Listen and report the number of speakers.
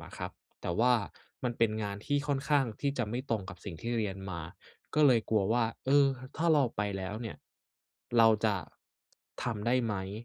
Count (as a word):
one